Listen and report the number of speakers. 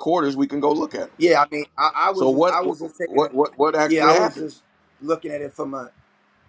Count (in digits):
2